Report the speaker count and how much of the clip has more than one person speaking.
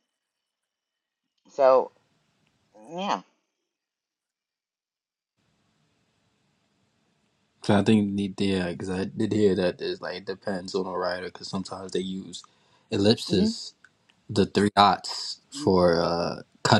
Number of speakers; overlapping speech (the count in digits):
2, about 2%